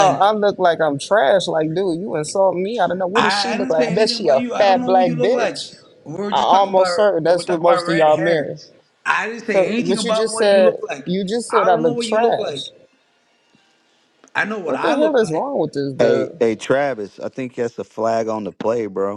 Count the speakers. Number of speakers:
3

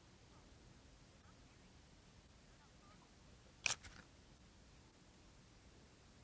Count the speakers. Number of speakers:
0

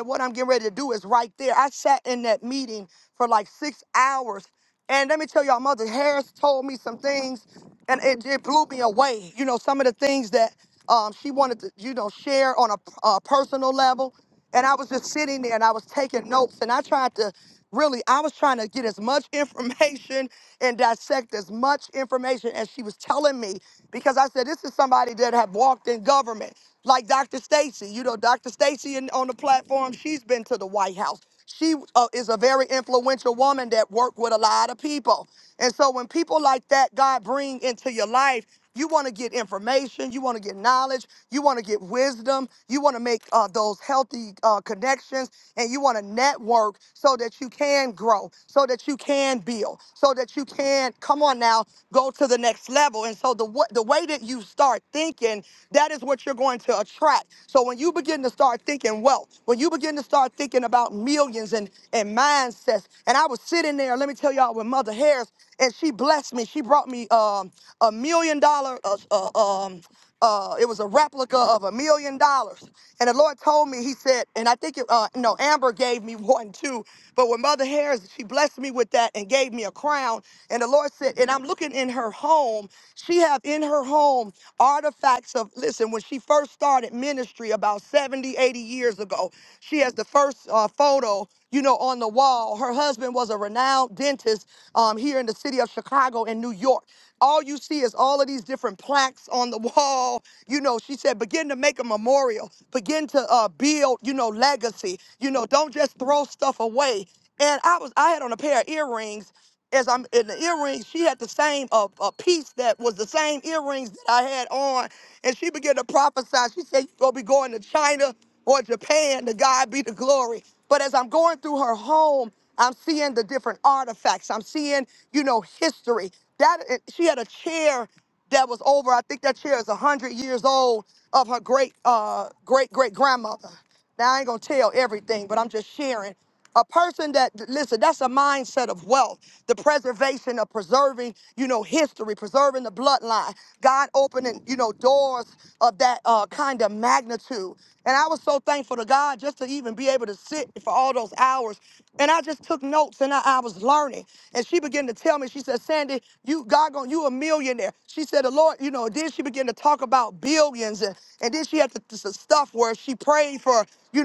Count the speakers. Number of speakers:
1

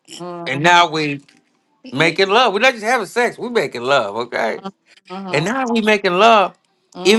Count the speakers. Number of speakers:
2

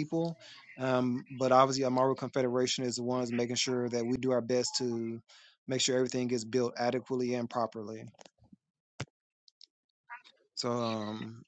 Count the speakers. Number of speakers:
1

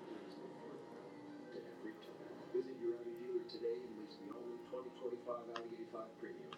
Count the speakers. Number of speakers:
0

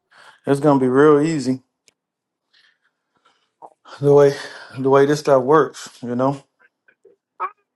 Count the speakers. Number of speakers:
1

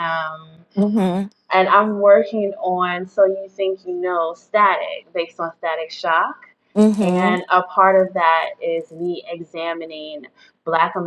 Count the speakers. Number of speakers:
2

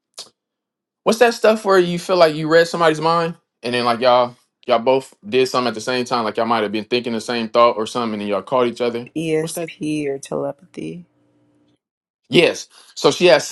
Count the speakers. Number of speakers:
2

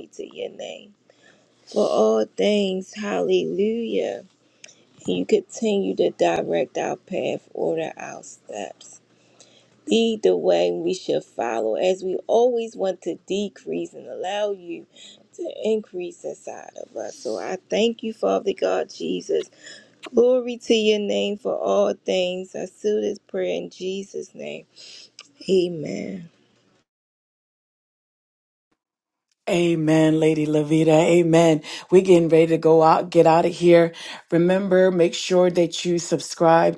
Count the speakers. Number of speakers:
2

